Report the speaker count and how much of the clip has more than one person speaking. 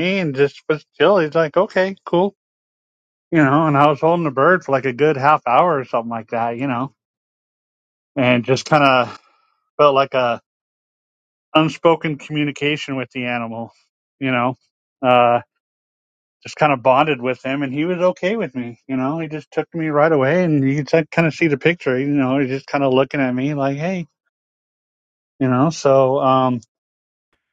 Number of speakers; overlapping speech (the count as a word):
one, no overlap